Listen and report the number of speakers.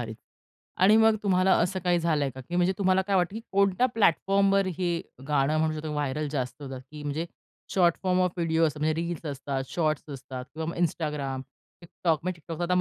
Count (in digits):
1